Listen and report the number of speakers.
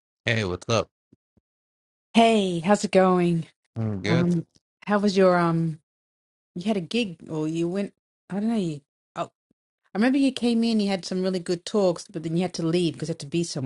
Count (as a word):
two